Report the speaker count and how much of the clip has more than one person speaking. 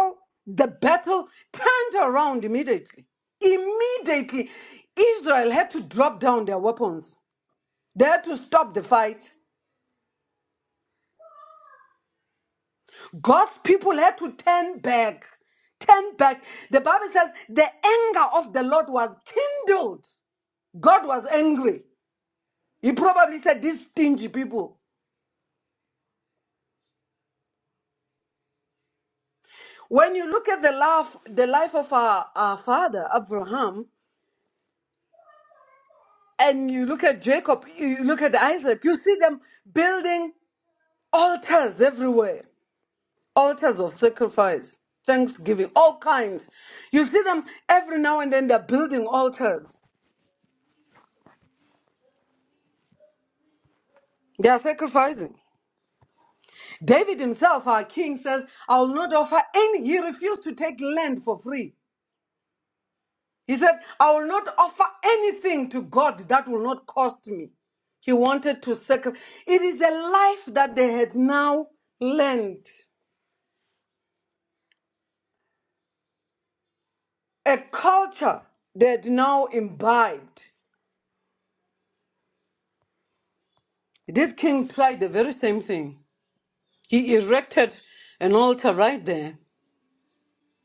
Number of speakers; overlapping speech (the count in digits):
1, no overlap